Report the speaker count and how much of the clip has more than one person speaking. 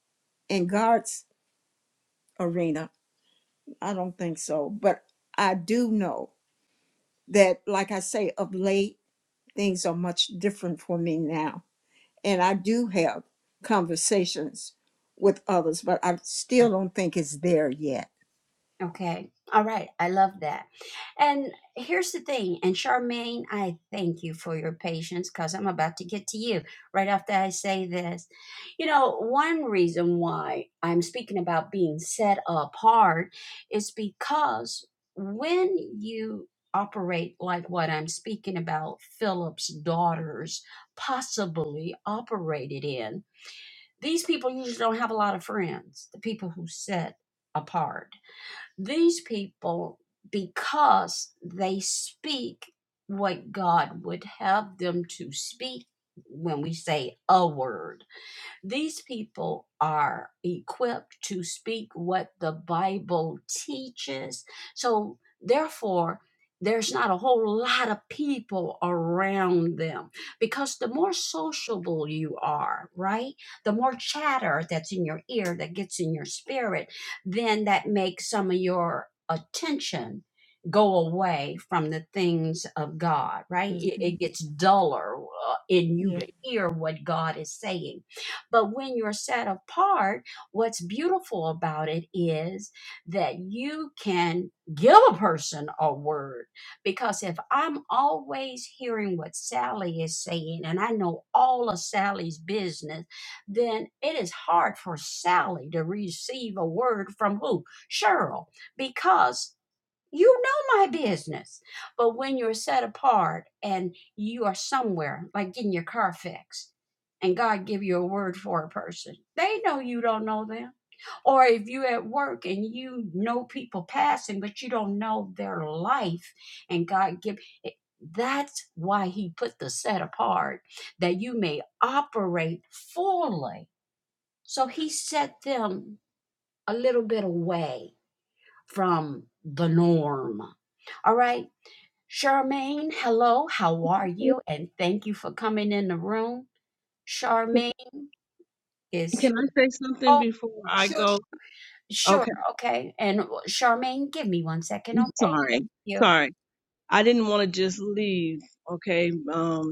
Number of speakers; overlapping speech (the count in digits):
3, about 2%